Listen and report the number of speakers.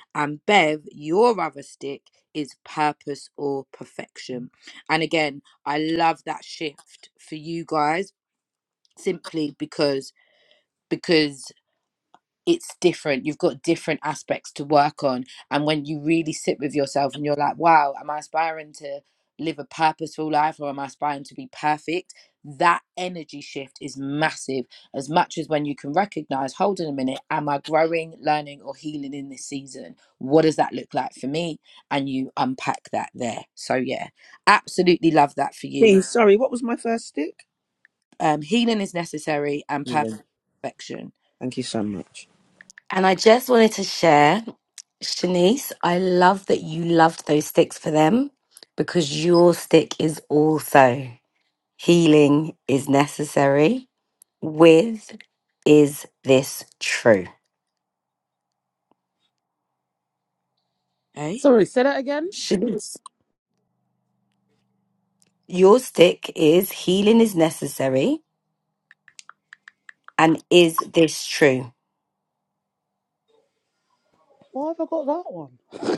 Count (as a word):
four